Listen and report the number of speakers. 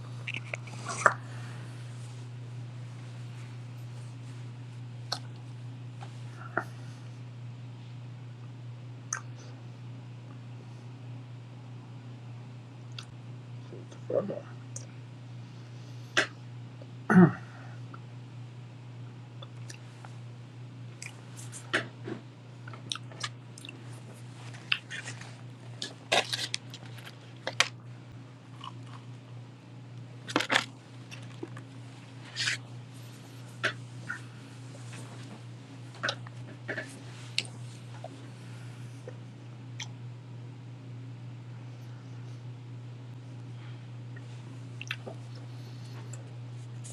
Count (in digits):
0